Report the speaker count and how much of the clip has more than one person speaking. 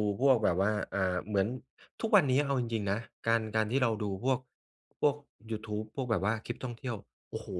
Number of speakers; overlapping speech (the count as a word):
one, no overlap